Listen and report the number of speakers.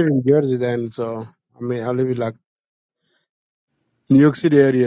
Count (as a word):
one